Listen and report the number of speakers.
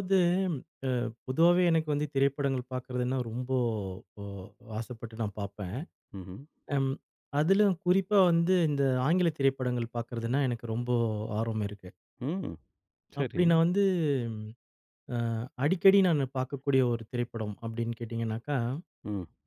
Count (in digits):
2